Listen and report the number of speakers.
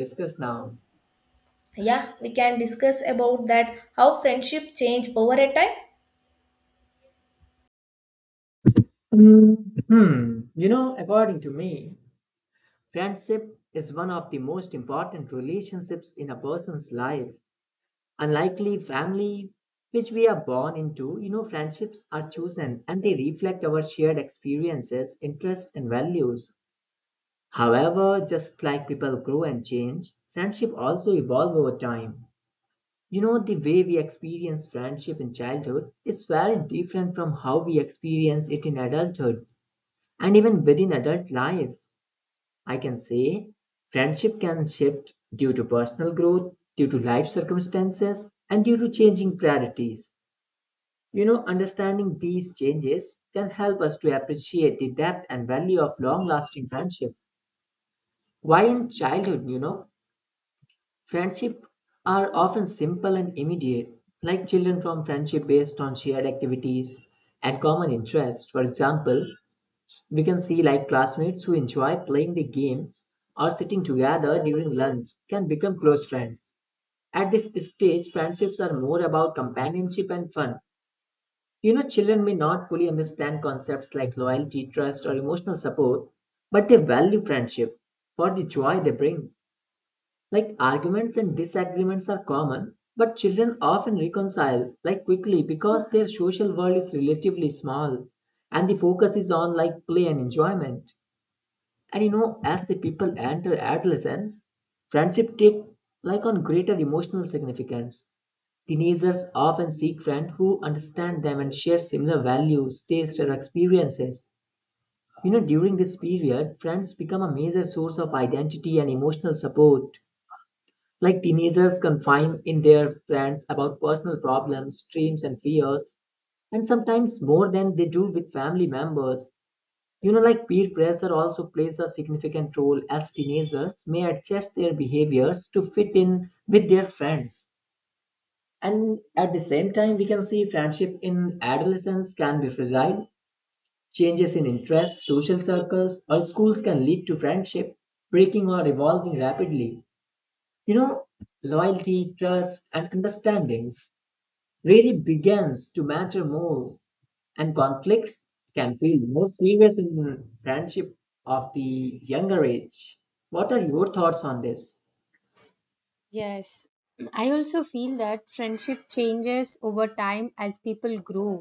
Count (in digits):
3